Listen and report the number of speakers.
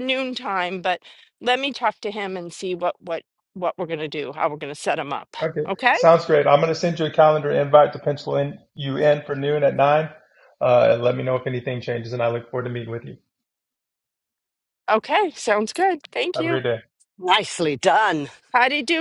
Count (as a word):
three